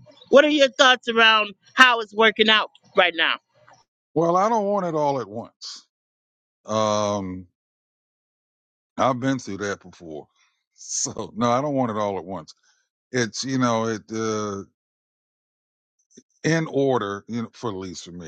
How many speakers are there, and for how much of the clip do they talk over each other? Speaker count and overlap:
2, no overlap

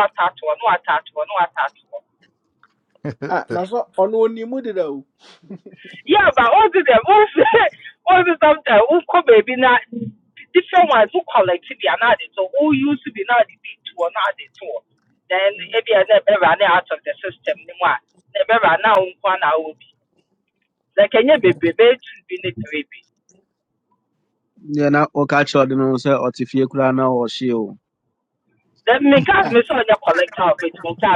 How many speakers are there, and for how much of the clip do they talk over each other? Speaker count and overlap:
3, about 1%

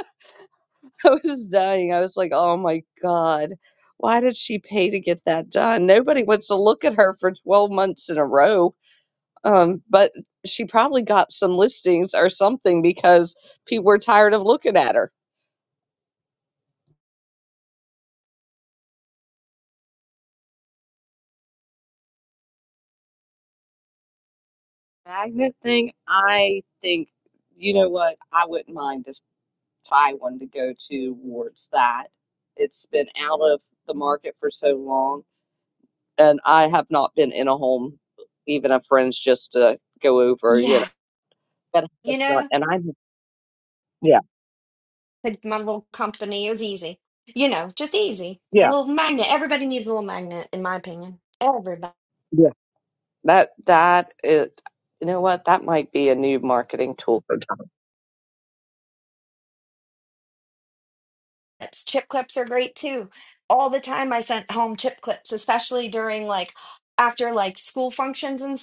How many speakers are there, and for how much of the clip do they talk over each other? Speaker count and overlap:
2, about 1%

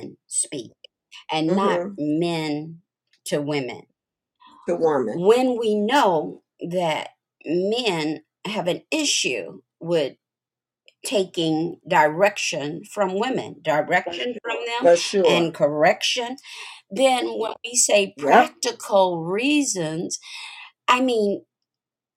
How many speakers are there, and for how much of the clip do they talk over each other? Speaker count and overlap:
2, about 7%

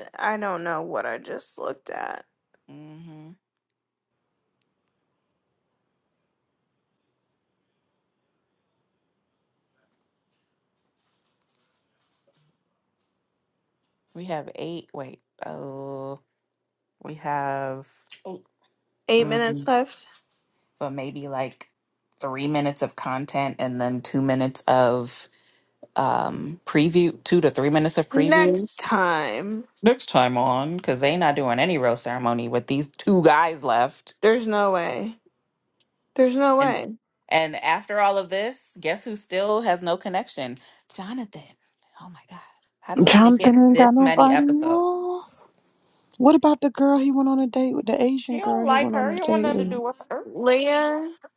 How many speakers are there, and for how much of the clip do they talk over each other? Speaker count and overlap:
3, about 9%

